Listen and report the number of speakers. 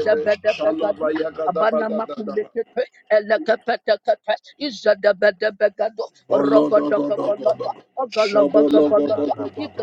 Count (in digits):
3